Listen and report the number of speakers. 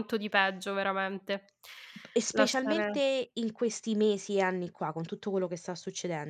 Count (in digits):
2